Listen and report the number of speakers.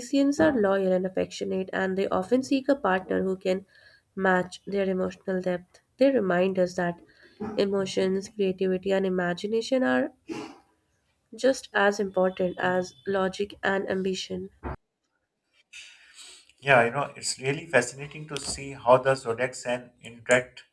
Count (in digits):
2